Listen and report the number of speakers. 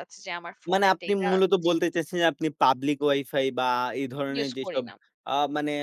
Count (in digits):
2